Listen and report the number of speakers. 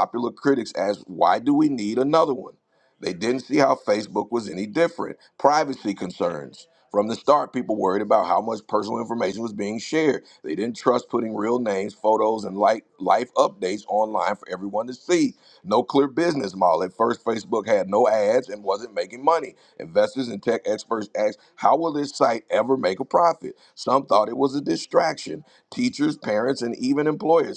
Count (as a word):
one